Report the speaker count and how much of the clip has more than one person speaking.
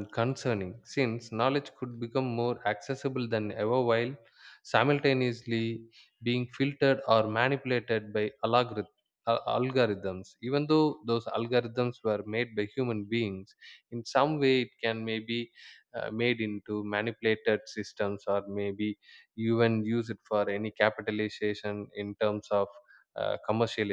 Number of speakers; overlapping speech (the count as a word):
one, no overlap